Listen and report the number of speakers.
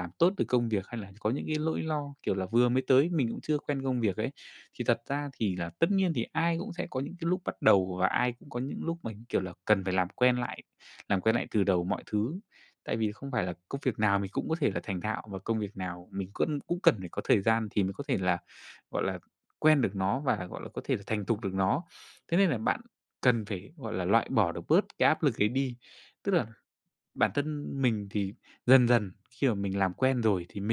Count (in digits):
1